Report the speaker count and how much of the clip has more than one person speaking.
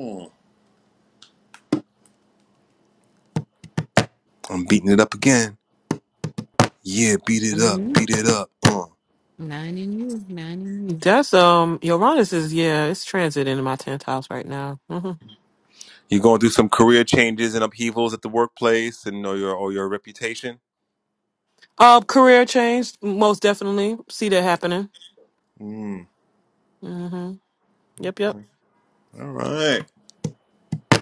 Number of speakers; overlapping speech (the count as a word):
three, about 2%